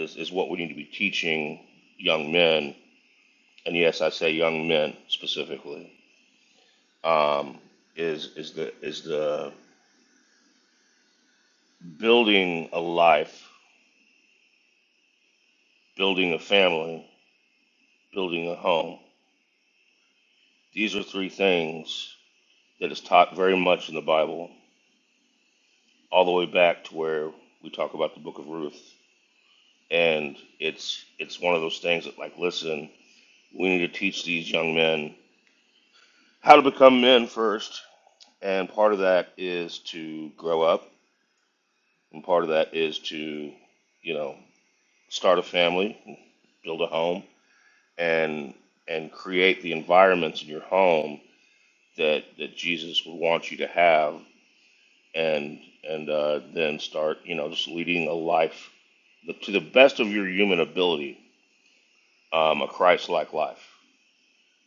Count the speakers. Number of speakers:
one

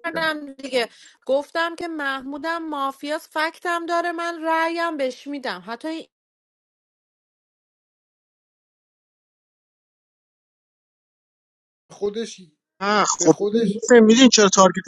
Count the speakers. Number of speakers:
three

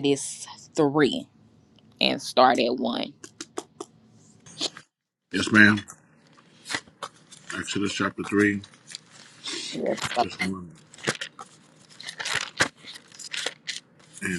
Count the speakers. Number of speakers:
two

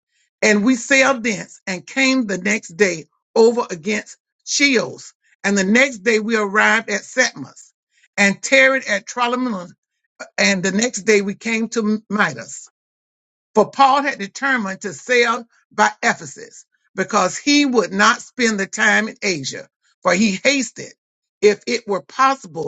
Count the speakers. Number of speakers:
one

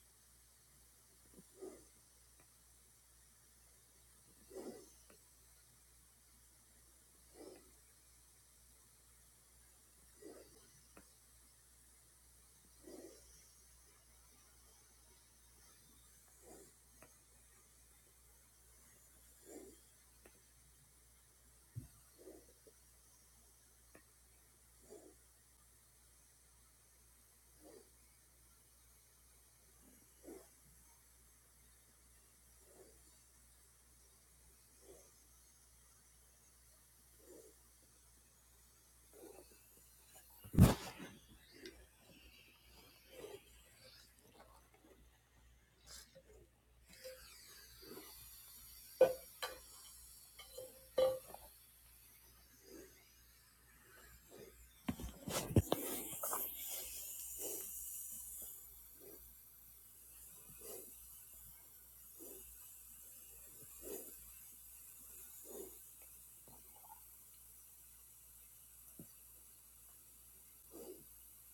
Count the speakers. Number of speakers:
zero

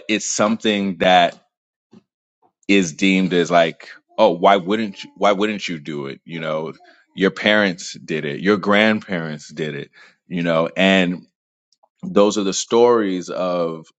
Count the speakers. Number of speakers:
one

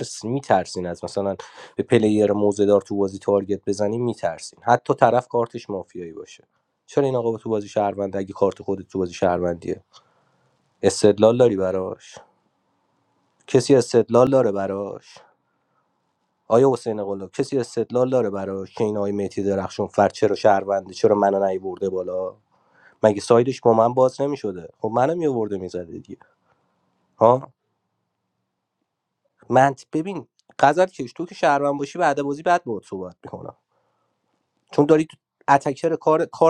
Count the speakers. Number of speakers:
one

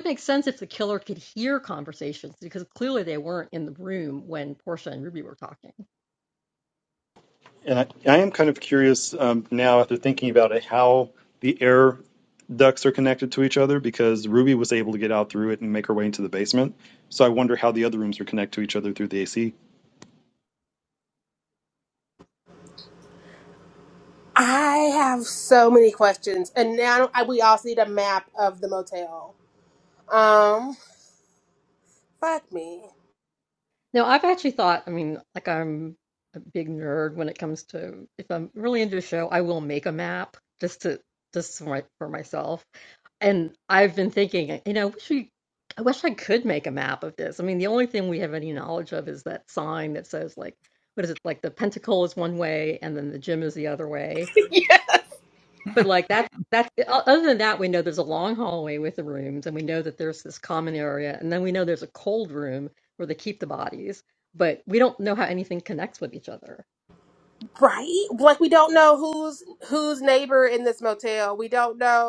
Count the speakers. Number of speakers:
three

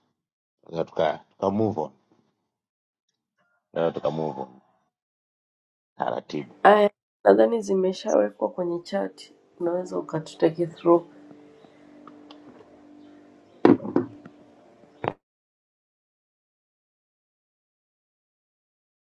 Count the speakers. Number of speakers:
two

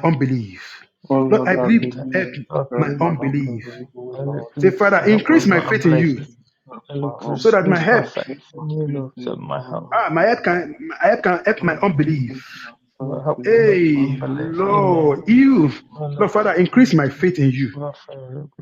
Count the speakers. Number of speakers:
three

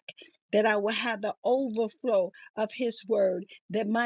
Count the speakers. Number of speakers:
one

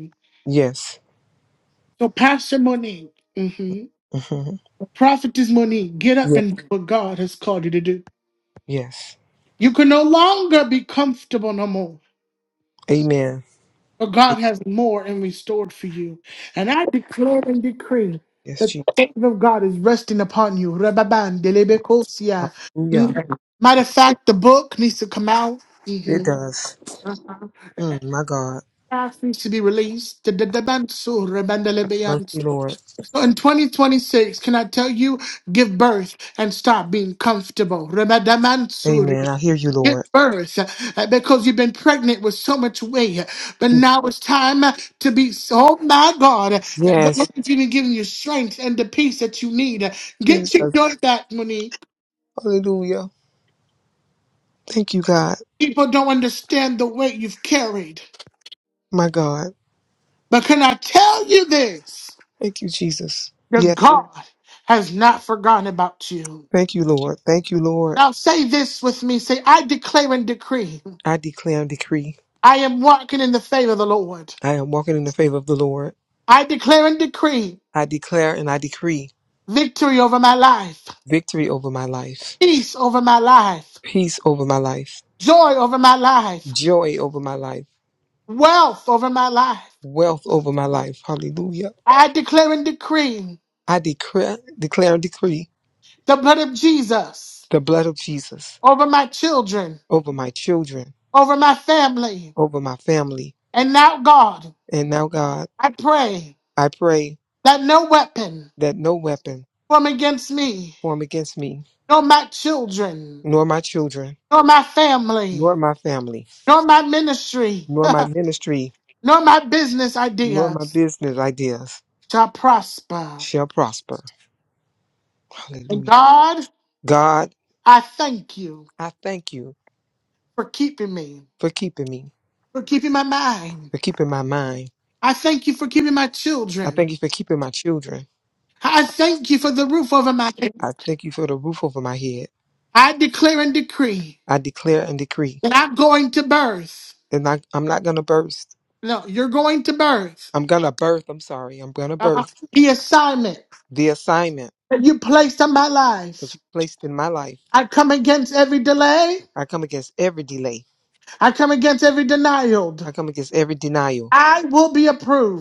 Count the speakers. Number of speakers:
two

